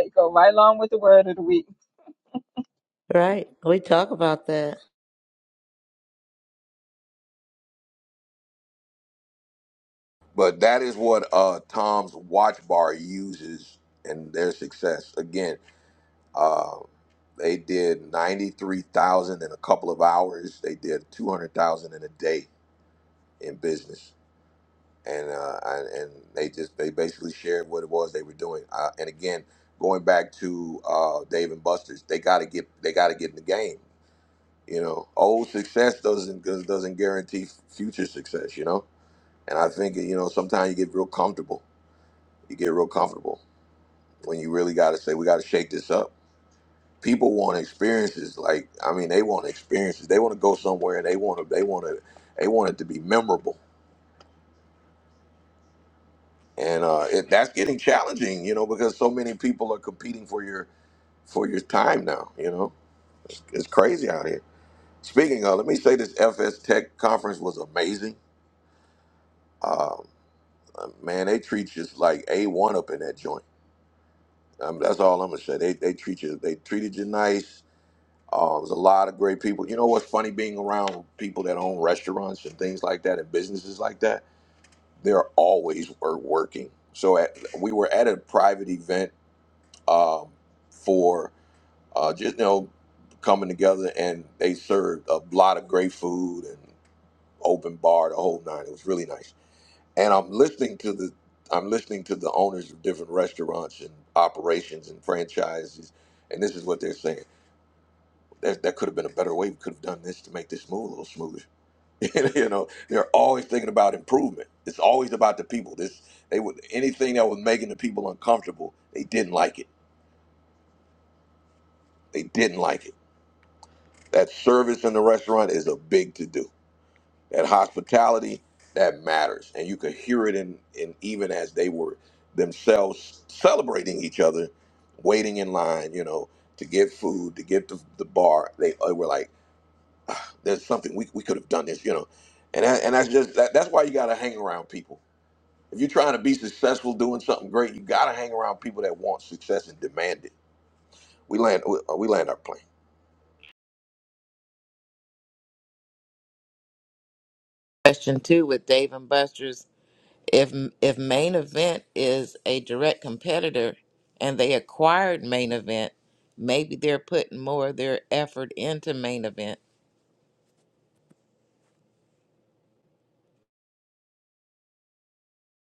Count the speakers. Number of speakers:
4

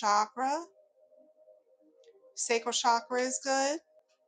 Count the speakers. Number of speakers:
1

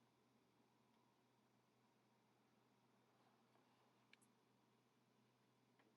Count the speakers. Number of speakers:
0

